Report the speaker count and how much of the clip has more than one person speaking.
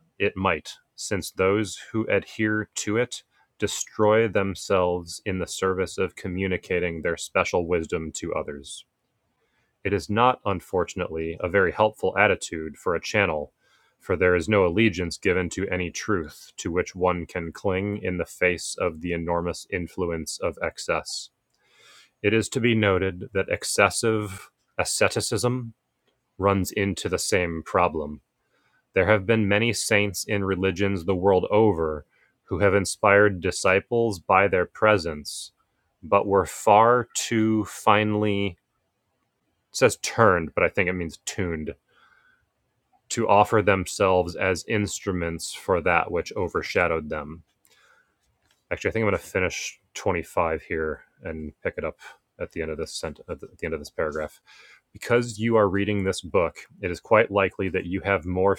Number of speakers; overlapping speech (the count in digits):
1, no overlap